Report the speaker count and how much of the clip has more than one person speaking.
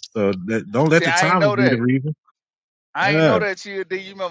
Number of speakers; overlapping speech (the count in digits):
2, about 29%